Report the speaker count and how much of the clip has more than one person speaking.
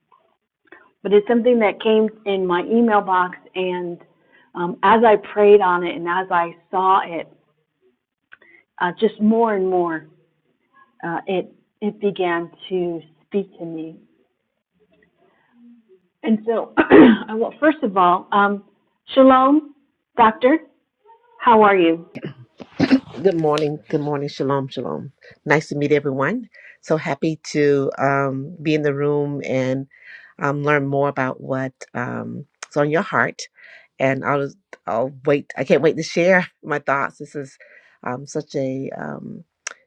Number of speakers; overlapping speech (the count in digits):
2, no overlap